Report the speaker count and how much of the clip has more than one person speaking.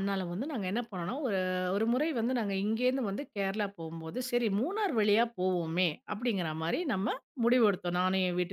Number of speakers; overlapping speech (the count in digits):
1, no overlap